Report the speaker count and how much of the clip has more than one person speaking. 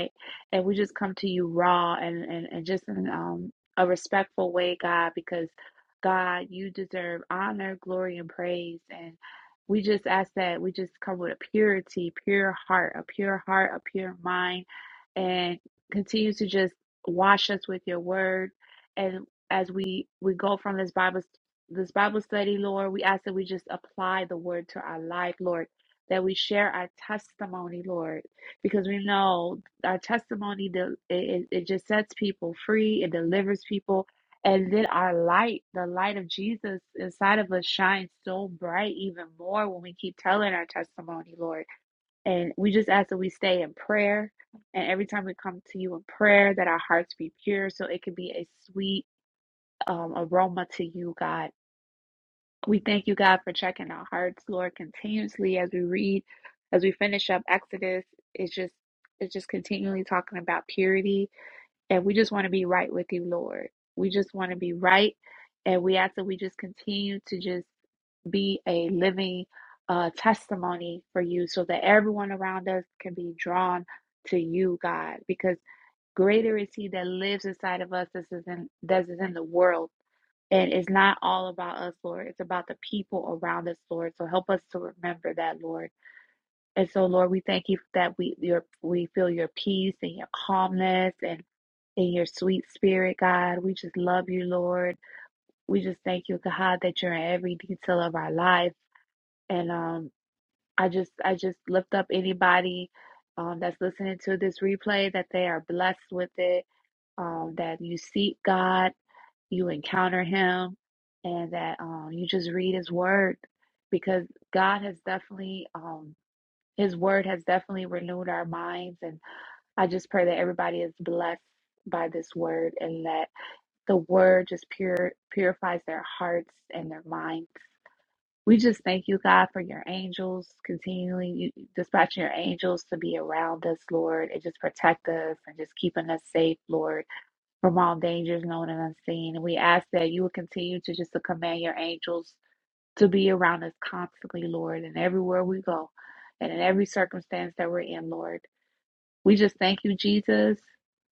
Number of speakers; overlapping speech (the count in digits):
1, no overlap